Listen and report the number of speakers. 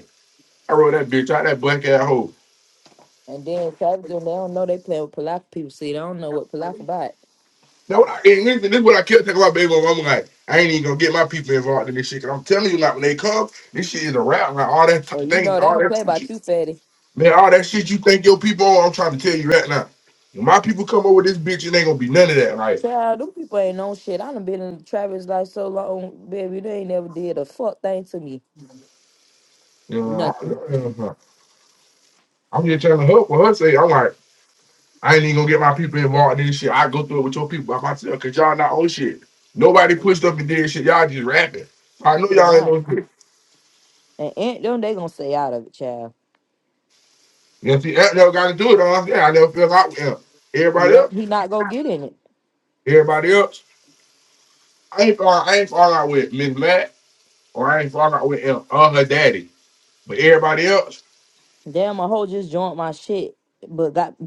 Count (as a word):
two